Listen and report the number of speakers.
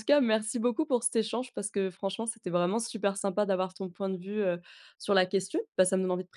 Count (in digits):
1